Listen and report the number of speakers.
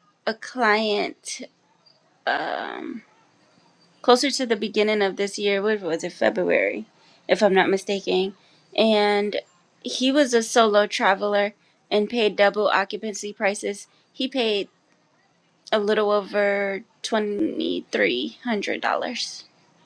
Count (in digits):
1